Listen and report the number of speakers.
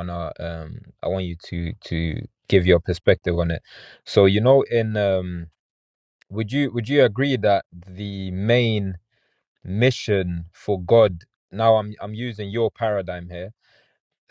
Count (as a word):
one